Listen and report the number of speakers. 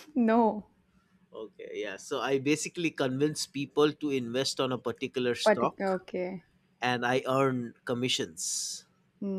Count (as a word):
two